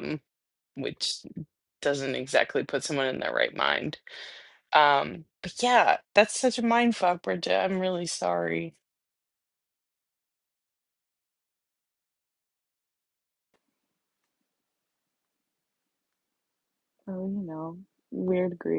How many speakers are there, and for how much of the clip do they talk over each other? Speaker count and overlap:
two, no overlap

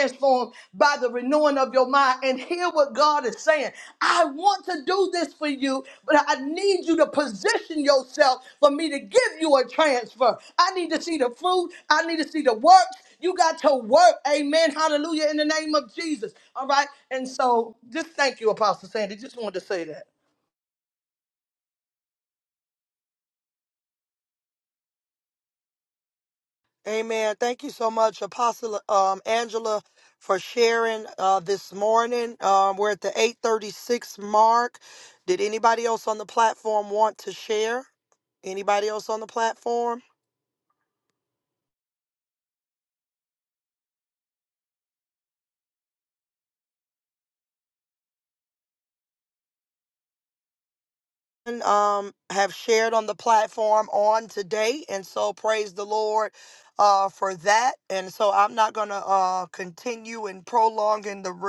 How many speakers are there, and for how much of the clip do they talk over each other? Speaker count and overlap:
two, no overlap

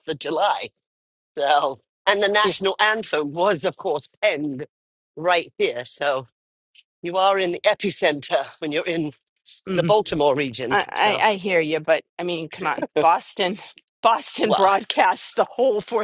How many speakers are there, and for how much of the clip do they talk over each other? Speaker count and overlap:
two, about 7%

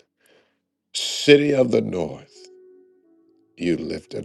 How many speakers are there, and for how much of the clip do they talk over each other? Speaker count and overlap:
one, no overlap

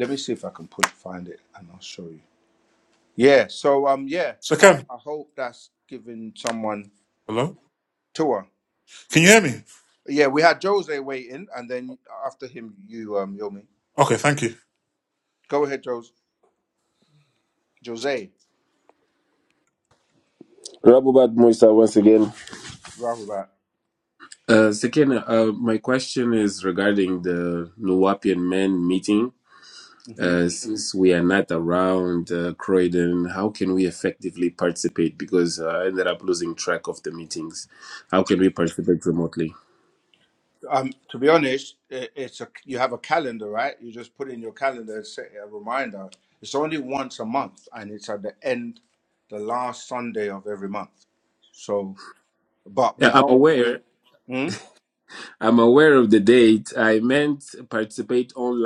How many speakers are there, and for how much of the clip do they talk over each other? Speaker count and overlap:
three, about 2%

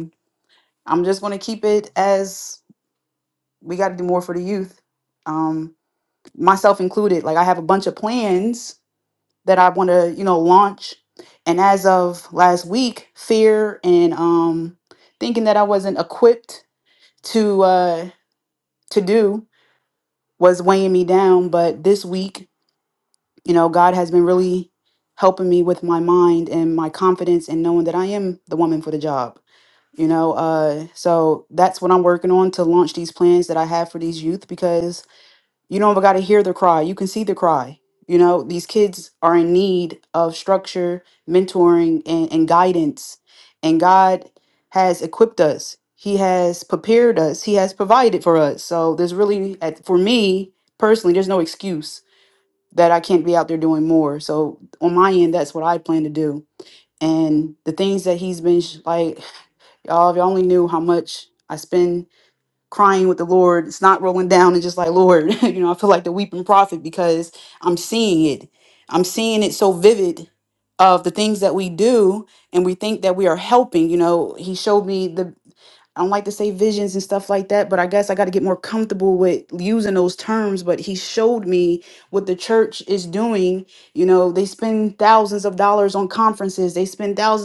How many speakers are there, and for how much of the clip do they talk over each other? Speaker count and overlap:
one, no overlap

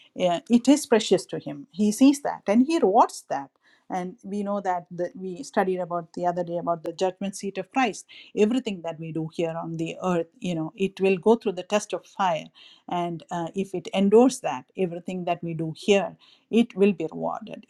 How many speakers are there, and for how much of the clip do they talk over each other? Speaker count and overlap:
one, no overlap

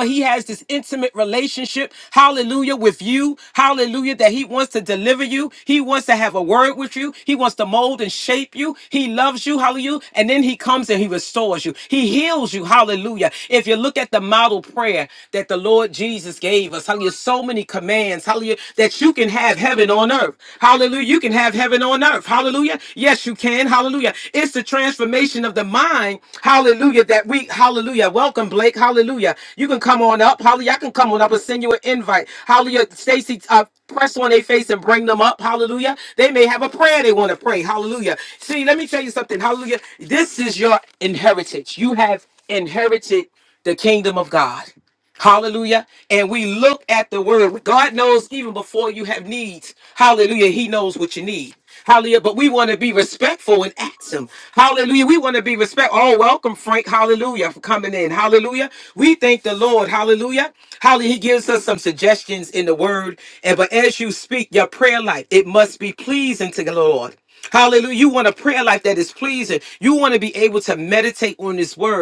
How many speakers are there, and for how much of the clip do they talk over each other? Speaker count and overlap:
one, no overlap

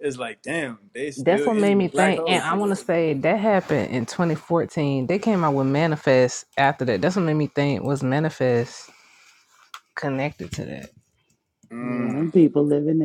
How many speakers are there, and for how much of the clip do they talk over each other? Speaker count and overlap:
three, about 14%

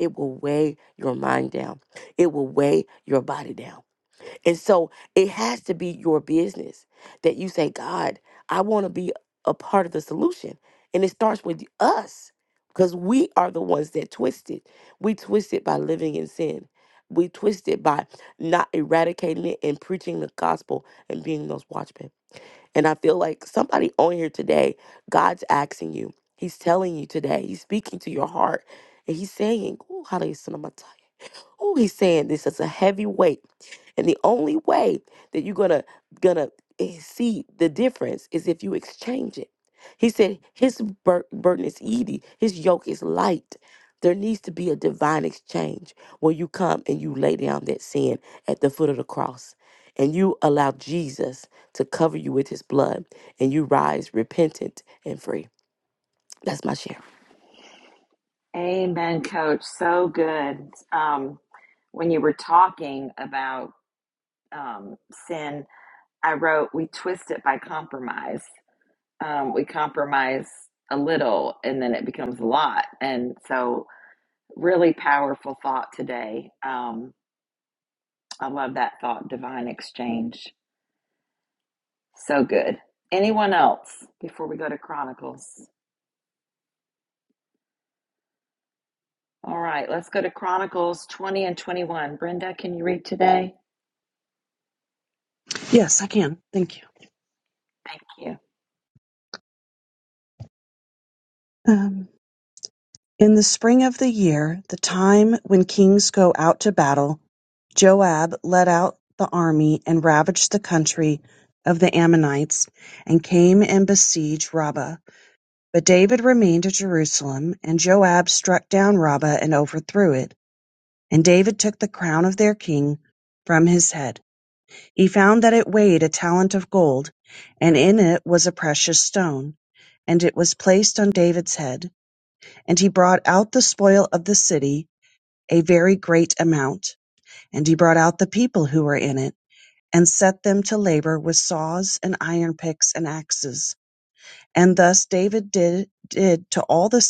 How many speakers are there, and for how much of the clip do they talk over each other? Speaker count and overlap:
three, no overlap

